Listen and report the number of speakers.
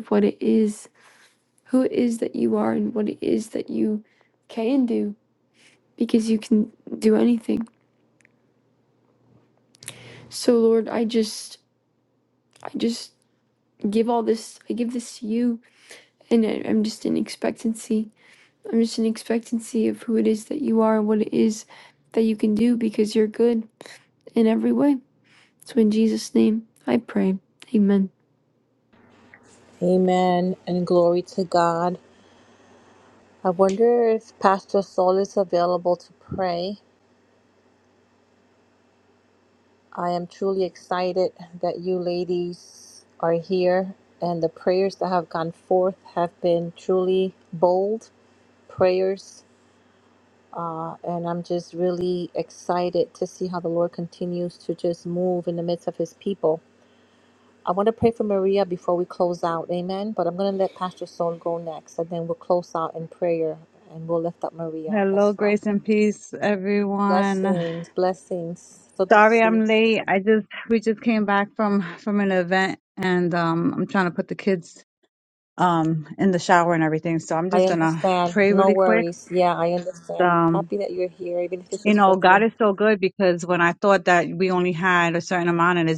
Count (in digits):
3